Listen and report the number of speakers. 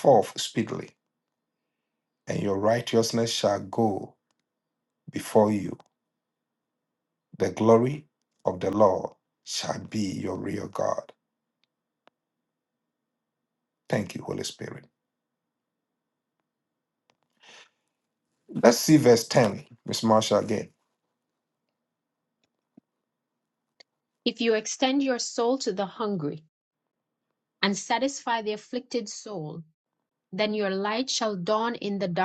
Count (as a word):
two